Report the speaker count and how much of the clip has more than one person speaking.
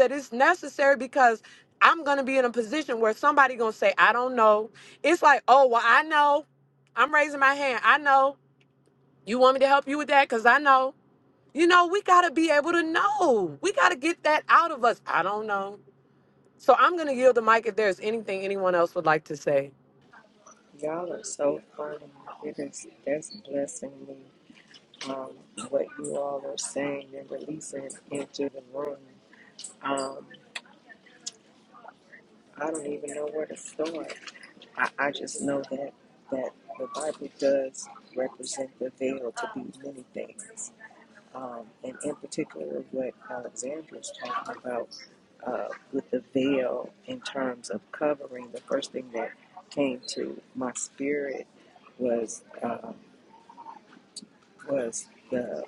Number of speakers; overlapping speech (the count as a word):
two, no overlap